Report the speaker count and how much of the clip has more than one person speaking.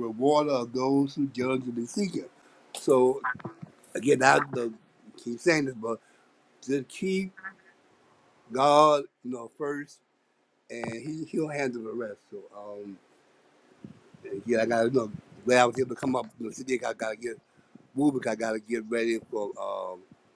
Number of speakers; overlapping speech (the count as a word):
one, no overlap